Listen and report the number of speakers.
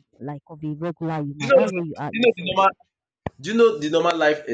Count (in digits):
2